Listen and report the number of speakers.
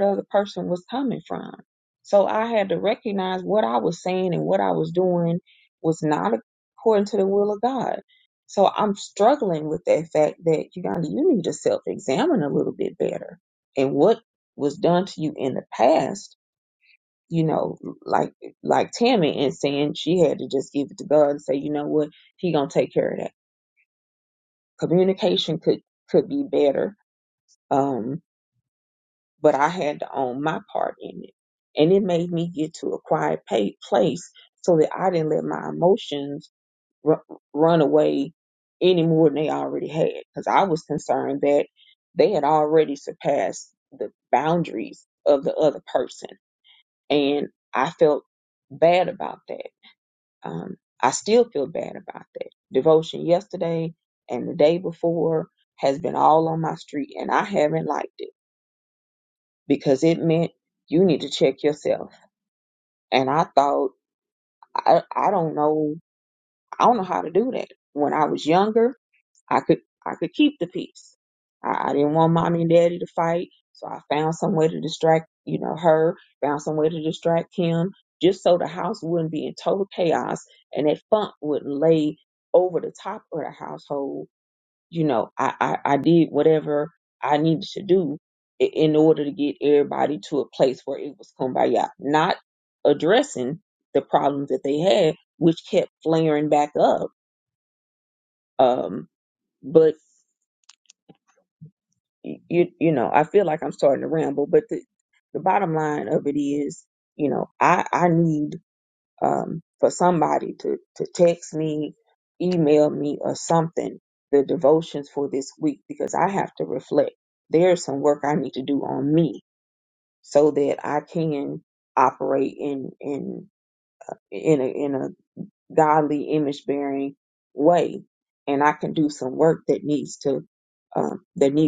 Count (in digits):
1